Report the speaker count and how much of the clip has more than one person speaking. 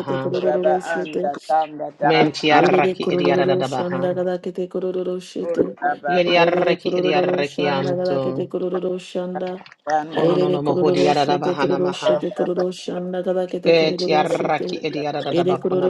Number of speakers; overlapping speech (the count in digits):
3, about 59%